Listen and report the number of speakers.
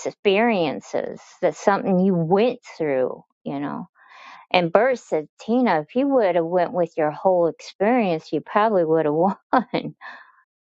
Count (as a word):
one